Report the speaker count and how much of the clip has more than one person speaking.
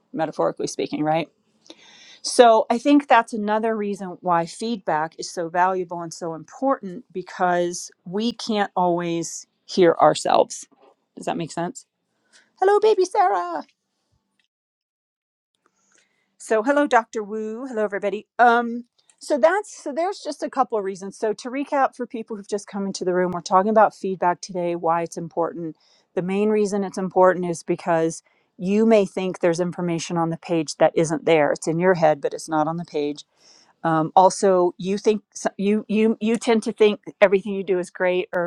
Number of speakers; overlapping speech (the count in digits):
1, no overlap